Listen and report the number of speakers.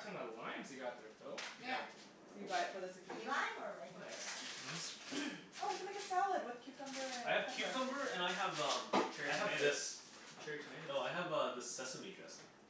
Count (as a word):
four